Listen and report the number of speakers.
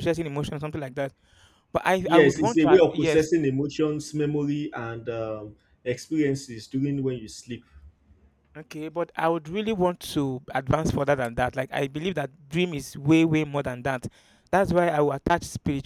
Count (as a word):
two